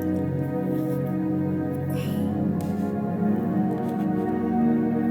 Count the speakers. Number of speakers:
zero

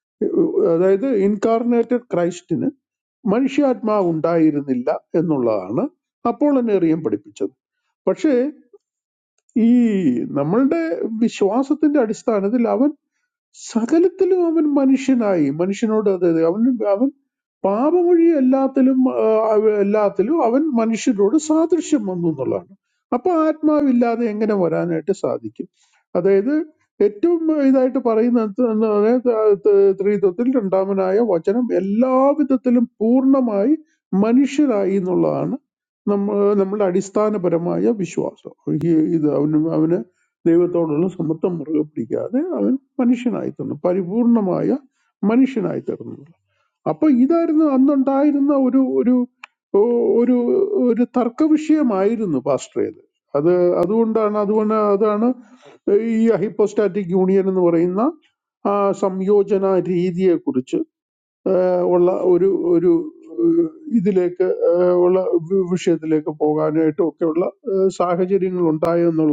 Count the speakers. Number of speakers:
one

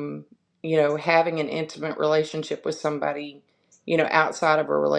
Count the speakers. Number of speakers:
one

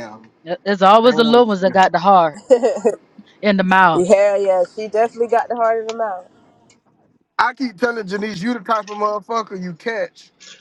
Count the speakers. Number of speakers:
three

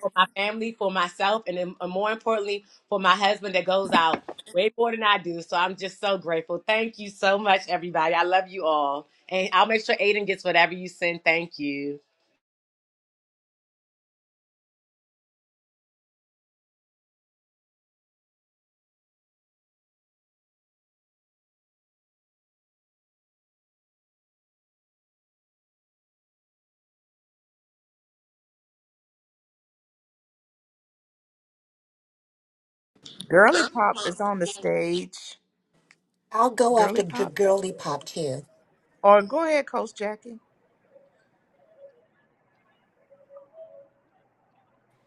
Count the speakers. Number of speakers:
three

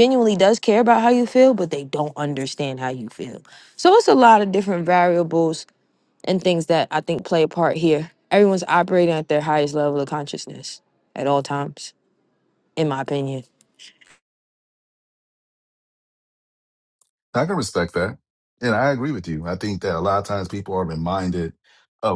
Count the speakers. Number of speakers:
two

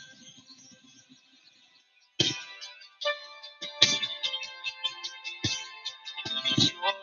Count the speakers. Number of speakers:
zero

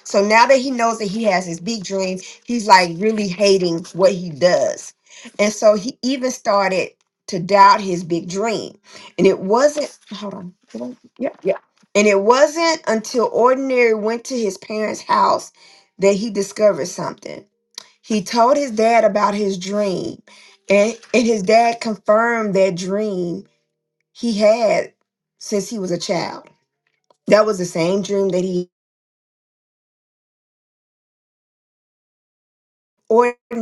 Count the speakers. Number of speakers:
one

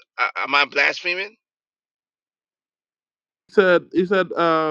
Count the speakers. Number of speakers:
two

